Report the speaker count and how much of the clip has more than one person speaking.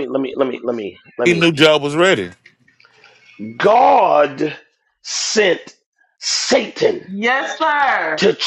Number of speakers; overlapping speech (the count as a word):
three, about 3%